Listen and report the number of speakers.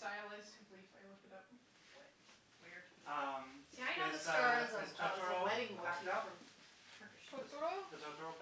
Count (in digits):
3